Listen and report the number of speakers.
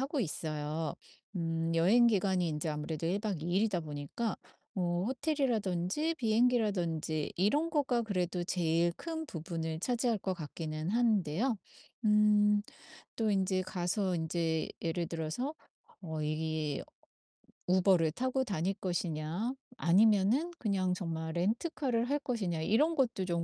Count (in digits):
1